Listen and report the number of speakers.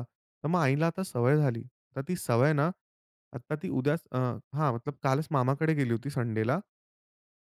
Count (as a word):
one